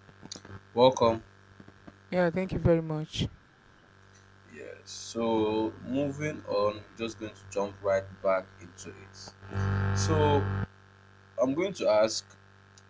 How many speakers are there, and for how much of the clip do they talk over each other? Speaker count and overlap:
2, no overlap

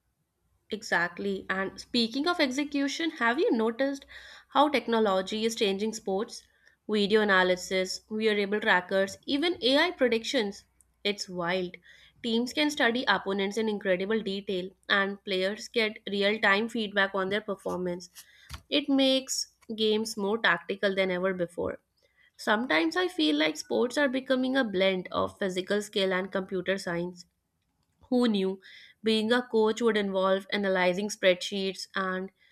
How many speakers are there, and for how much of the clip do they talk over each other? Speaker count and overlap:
1, no overlap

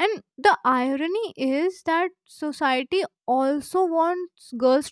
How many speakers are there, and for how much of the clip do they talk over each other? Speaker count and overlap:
1, no overlap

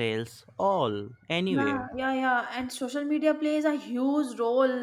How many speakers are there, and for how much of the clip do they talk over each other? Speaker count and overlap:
2, about 7%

